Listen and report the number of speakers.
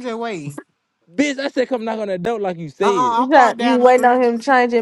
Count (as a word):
three